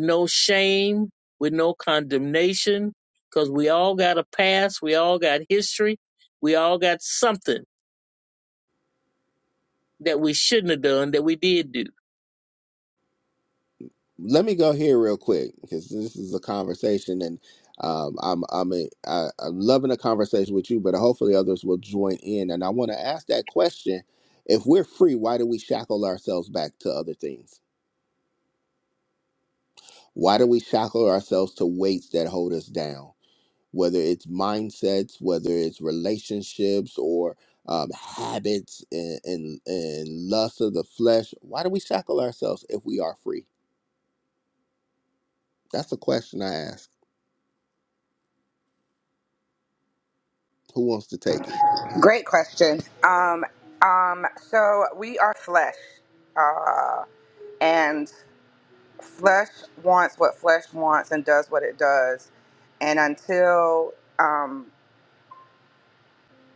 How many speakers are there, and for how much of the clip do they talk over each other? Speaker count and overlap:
3, no overlap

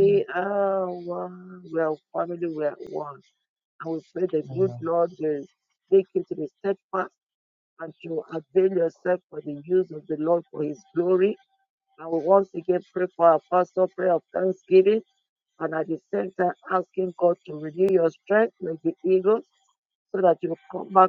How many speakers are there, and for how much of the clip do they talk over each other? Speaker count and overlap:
1, no overlap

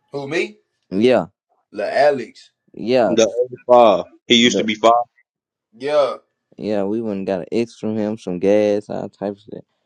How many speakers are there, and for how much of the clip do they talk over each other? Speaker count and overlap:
3, about 1%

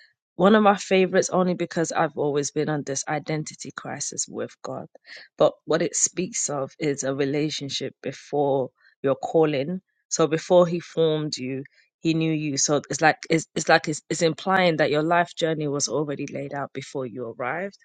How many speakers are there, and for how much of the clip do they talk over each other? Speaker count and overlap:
1, no overlap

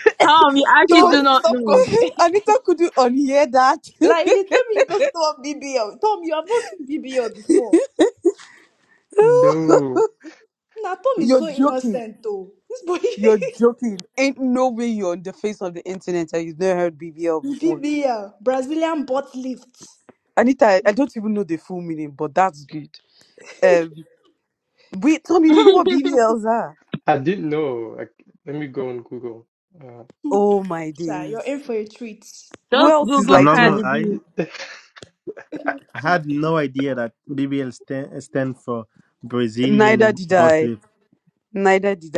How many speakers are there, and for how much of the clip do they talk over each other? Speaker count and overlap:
5, about 12%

